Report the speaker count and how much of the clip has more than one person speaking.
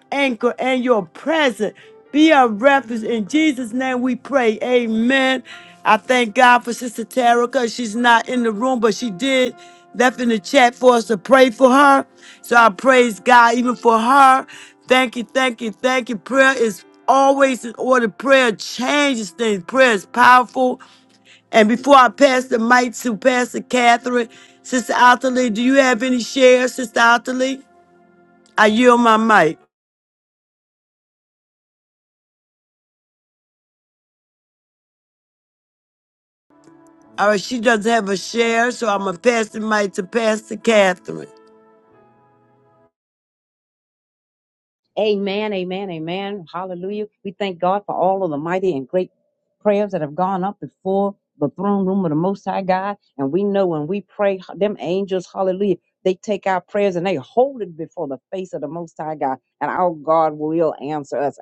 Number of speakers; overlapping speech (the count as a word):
two, no overlap